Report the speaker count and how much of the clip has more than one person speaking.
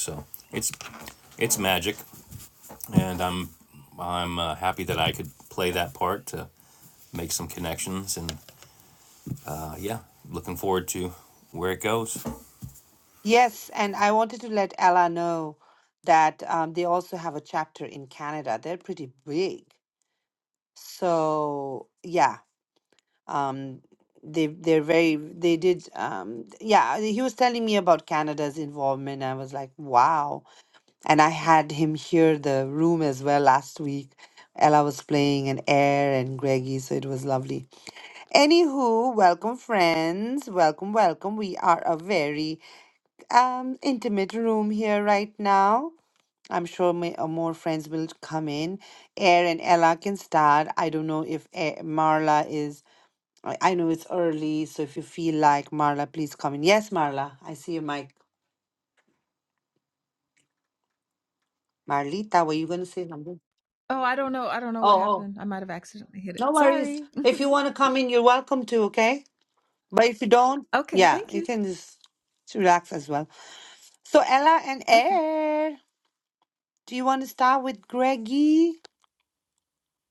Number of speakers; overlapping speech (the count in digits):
3, about 2%